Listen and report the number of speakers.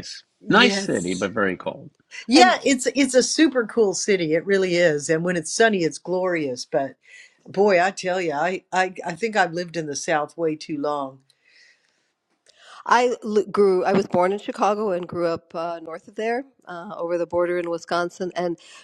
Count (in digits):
3